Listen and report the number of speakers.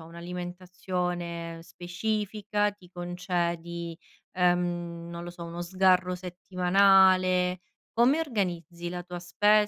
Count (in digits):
1